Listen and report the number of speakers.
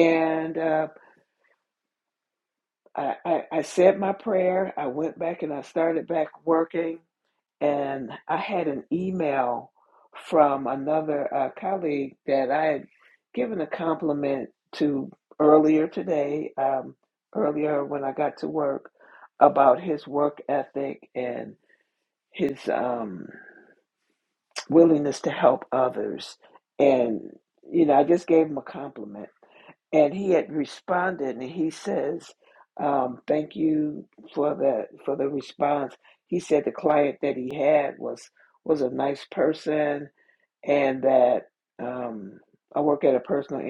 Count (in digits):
1